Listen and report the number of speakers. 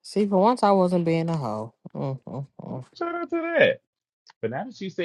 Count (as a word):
two